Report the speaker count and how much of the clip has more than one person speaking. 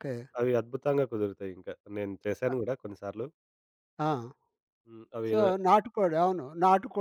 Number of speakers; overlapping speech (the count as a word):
two, about 5%